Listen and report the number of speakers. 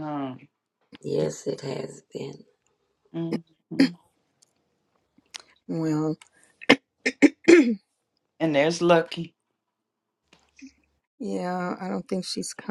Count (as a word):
three